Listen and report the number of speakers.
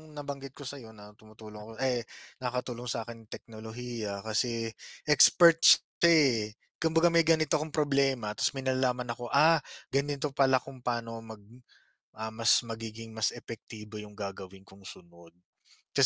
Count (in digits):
1